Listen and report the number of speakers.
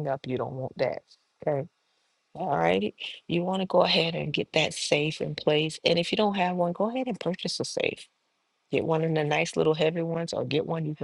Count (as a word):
one